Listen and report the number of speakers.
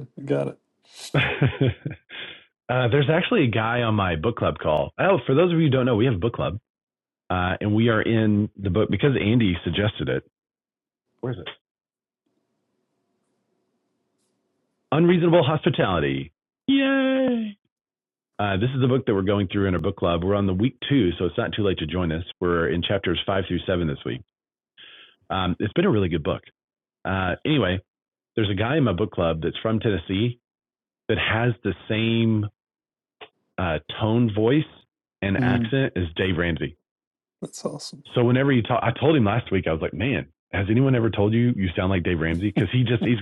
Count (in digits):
2